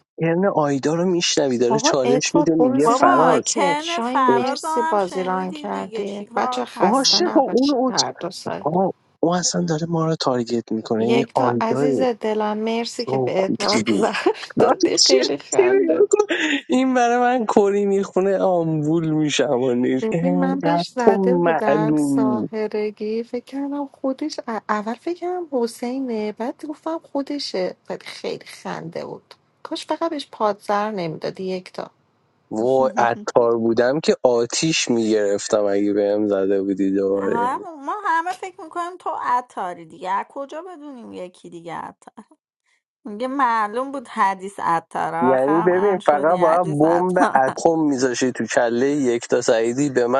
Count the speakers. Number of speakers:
three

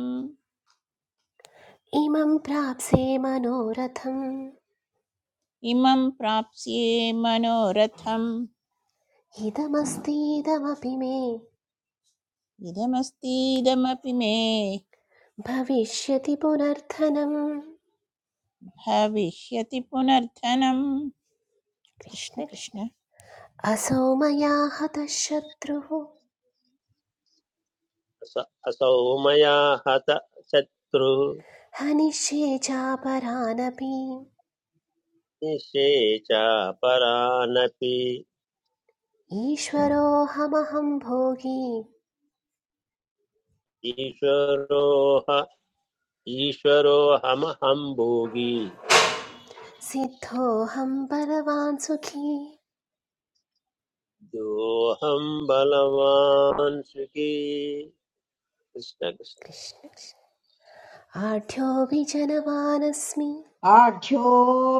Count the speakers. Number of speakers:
four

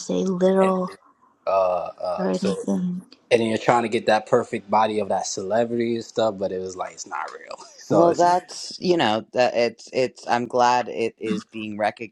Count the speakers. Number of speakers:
three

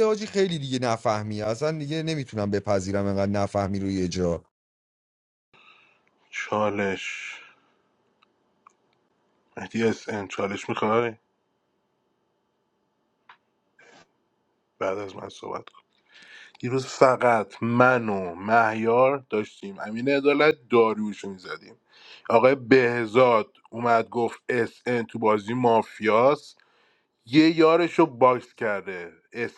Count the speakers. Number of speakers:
two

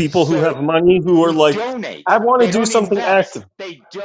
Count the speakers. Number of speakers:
two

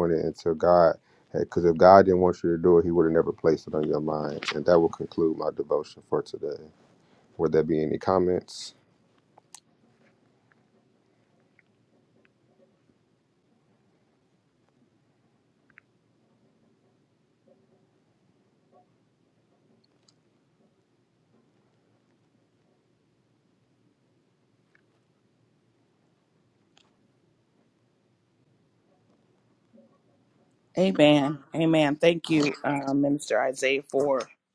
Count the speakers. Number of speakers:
two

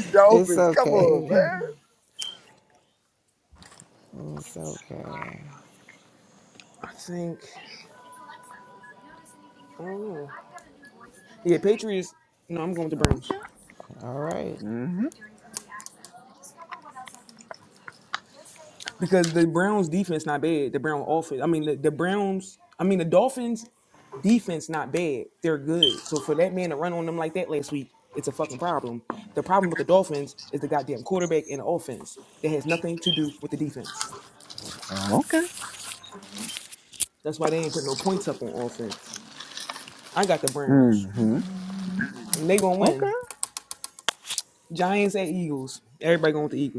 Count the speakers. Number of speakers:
three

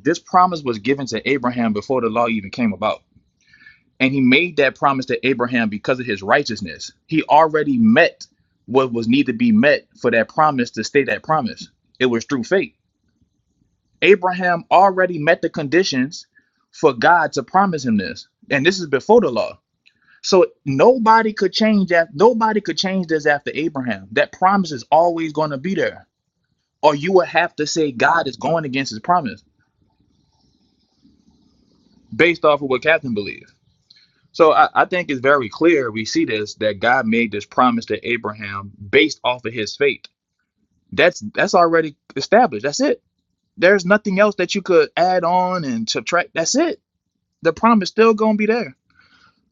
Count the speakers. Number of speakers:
one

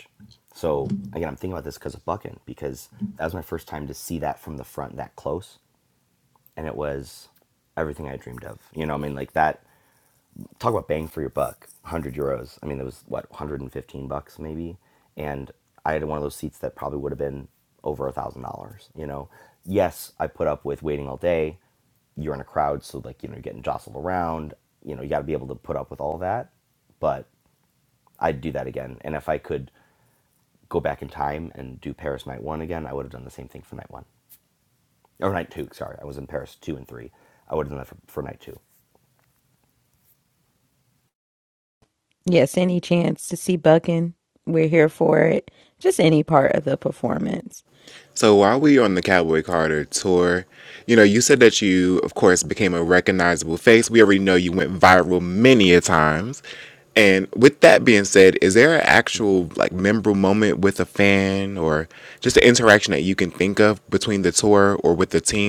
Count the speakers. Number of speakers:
three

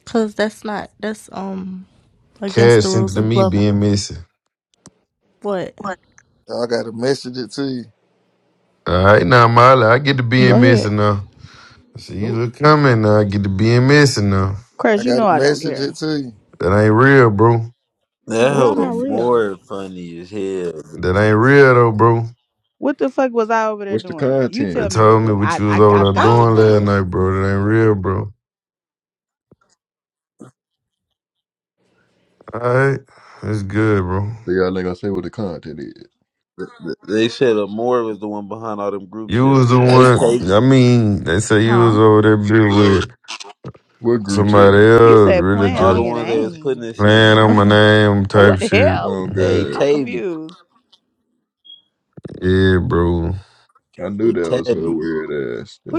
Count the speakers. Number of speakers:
six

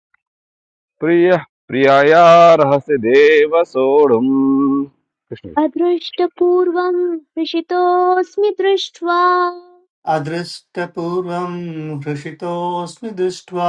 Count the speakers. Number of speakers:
three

